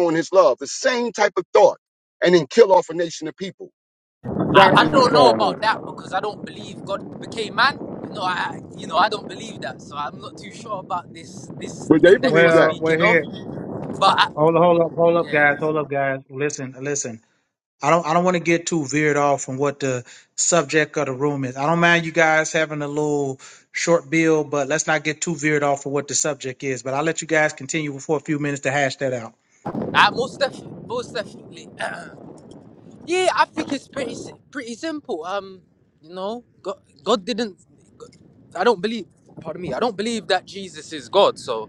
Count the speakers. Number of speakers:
3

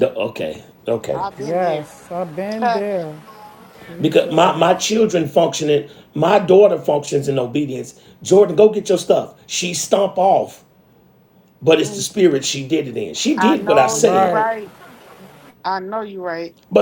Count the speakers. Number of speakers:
3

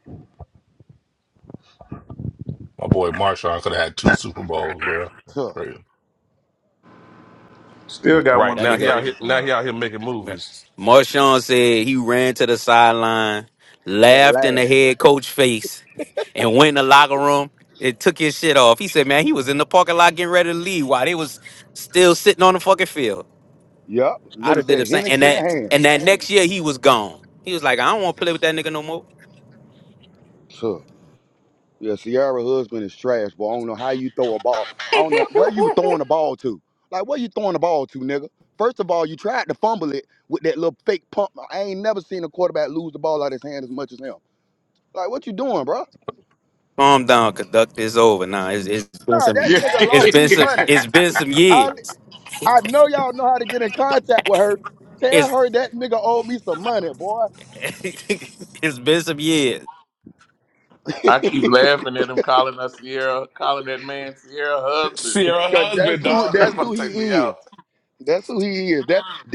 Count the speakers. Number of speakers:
5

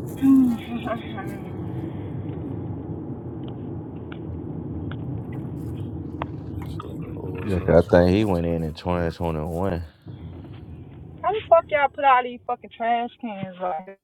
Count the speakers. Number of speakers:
3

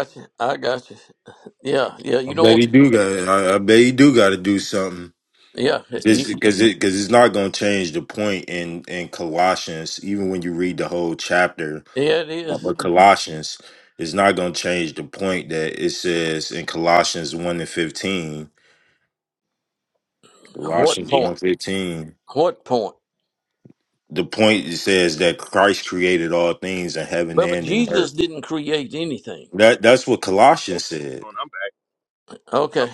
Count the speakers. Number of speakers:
2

